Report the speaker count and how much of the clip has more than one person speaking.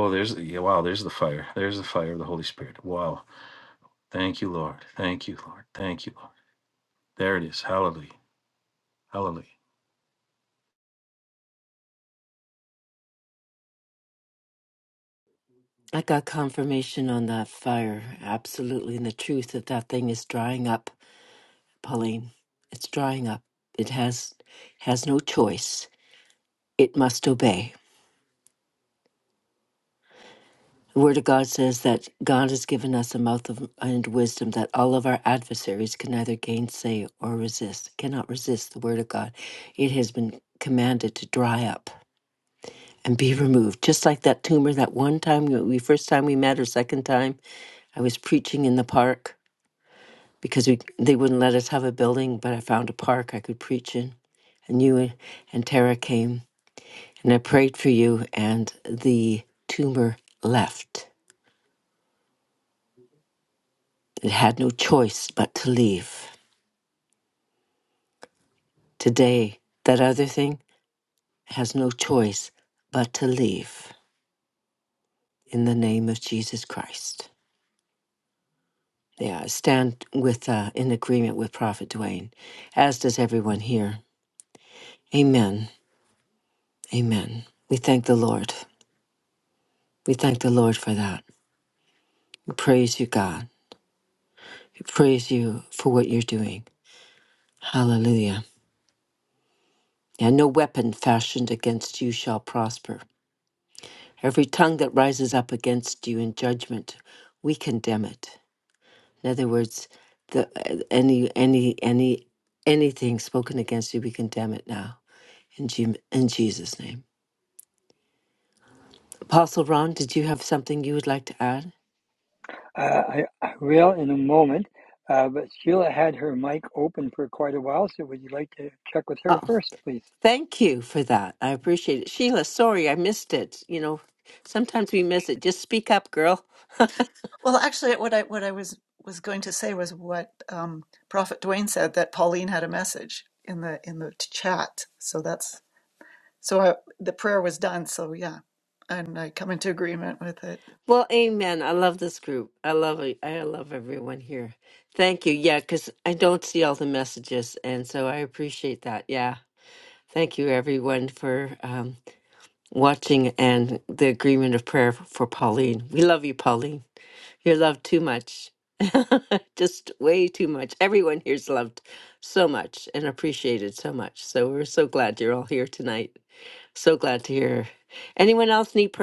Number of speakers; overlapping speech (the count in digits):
4, under 1%